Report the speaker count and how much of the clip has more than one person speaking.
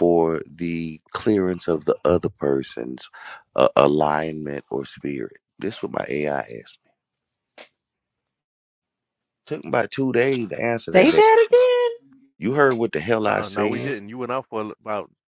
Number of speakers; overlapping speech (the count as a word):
three, about 7%